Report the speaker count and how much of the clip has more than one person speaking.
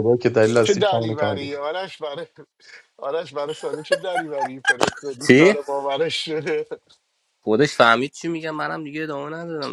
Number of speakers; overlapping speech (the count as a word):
three, about 12%